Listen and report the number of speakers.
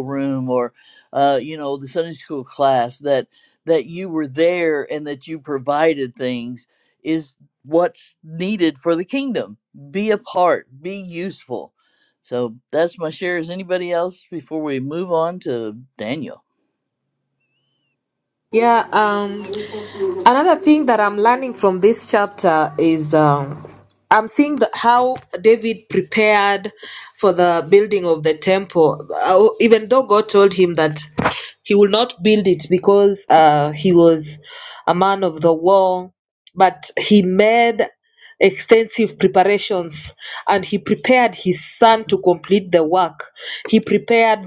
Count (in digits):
2